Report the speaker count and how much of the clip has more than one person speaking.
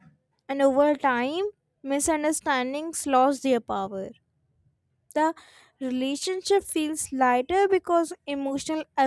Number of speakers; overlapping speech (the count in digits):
1, no overlap